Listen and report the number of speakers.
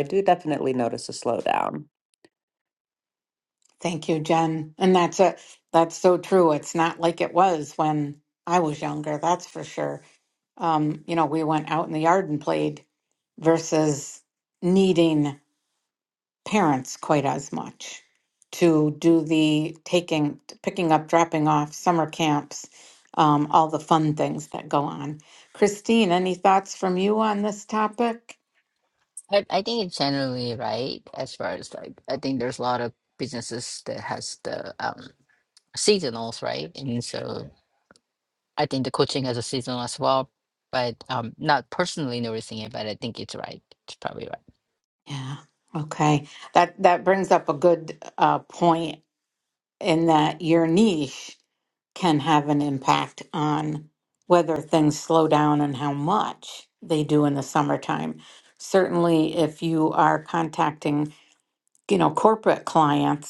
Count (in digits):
3